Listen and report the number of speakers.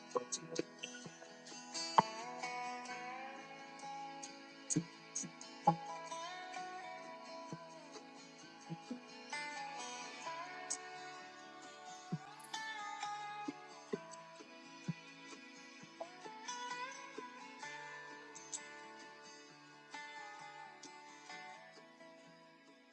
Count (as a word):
zero